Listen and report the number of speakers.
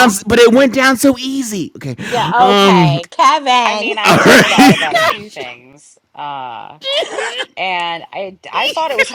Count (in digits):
3